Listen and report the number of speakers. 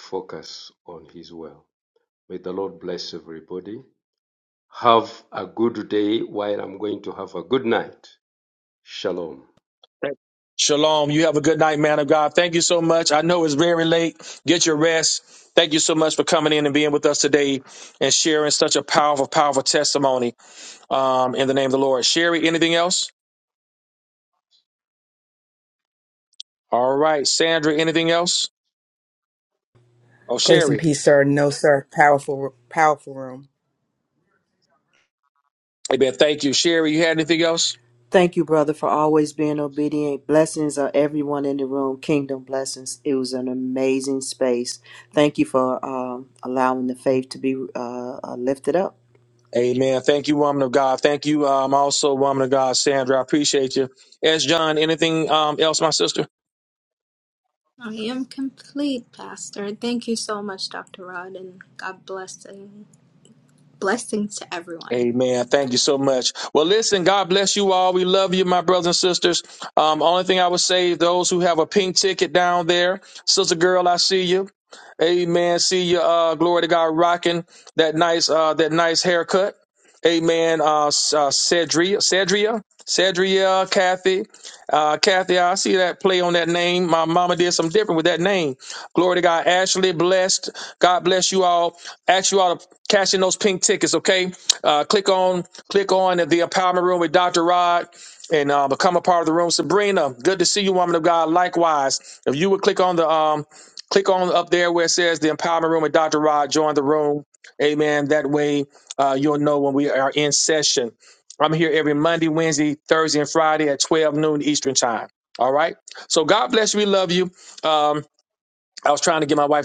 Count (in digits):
5